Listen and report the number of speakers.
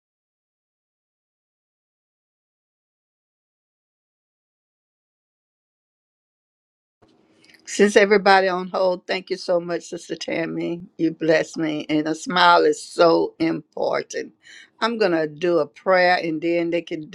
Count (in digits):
1